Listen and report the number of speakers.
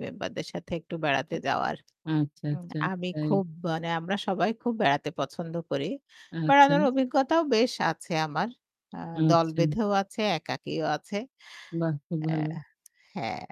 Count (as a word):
two